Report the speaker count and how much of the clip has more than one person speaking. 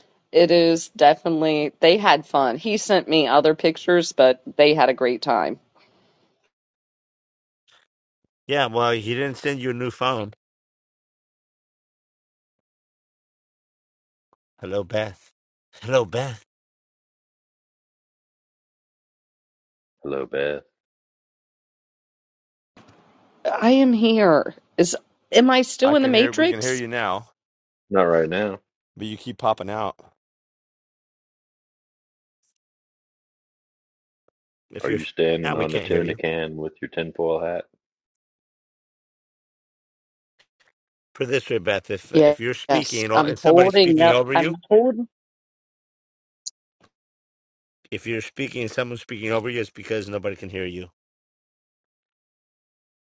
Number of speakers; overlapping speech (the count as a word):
three, about 7%